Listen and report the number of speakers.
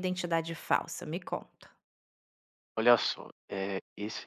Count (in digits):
2